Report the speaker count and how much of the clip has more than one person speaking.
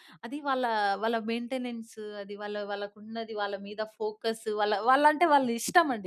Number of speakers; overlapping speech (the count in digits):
1, no overlap